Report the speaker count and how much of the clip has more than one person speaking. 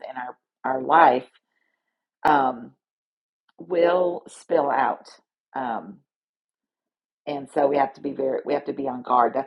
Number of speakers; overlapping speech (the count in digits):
1, no overlap